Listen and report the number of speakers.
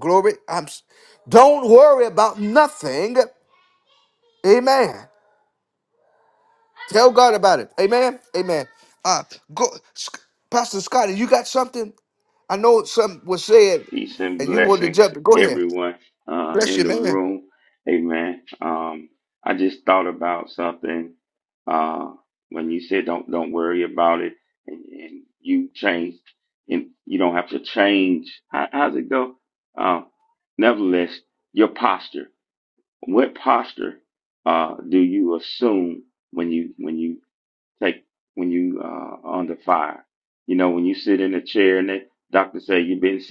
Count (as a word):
two